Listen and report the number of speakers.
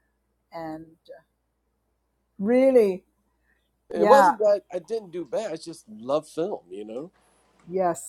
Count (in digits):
2